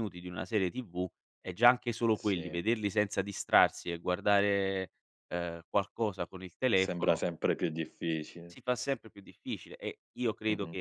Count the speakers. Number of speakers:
two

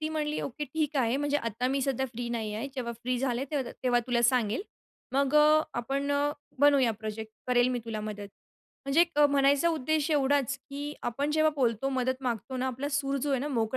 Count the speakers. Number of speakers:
one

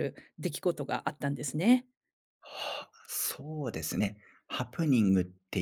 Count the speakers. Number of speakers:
two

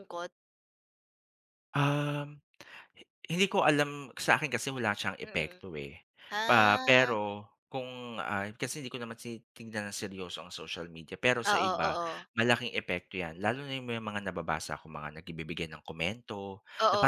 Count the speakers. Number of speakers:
two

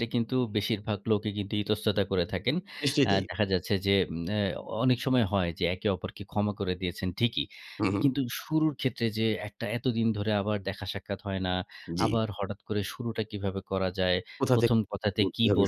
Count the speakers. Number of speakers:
two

